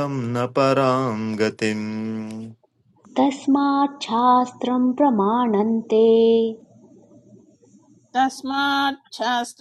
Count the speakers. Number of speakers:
3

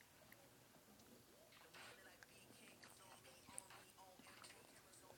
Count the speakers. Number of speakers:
0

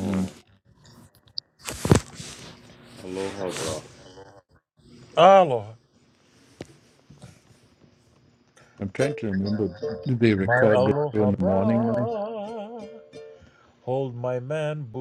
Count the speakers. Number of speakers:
3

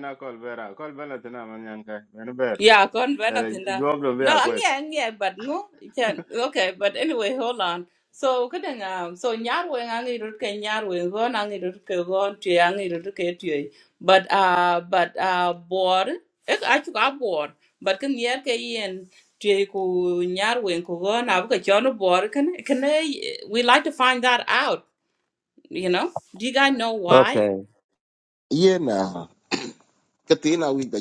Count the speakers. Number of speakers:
3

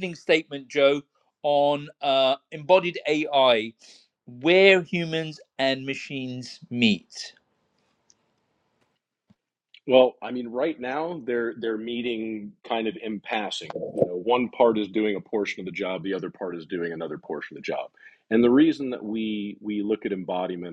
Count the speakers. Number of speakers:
2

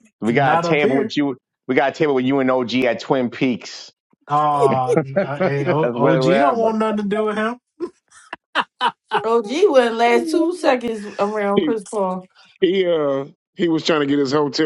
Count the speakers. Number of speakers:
4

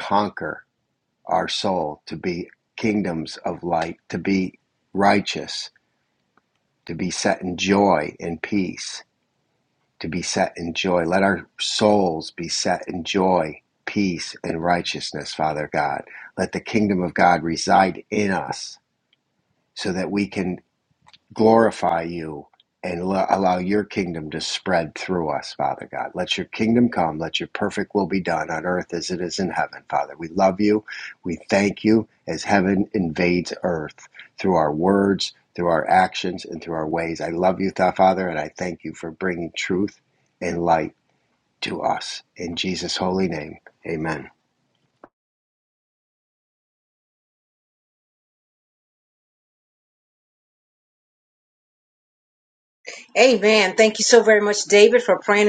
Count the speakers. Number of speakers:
2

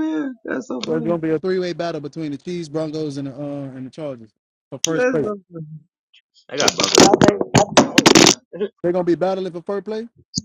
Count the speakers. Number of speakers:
3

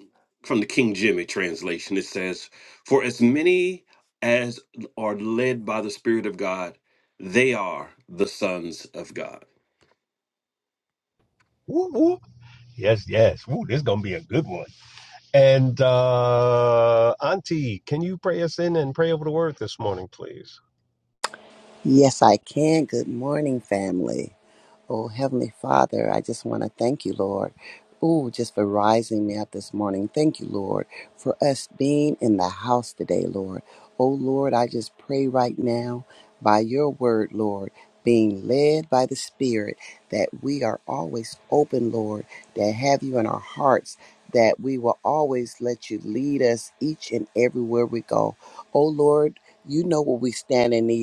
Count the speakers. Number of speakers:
3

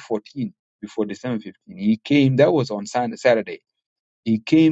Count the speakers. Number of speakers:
1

